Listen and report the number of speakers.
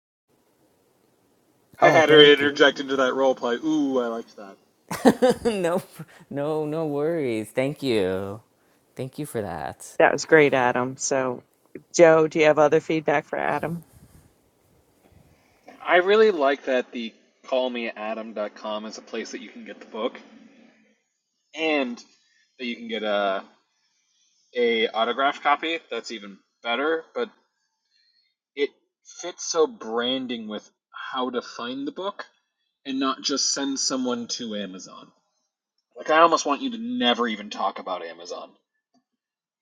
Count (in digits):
3